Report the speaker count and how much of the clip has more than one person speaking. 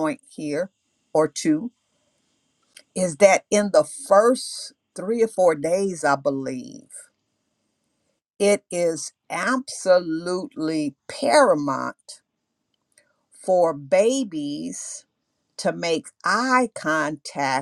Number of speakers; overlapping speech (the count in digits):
1, no overlap